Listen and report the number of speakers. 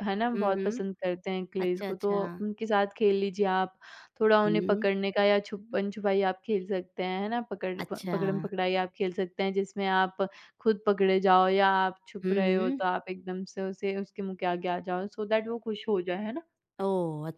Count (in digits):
2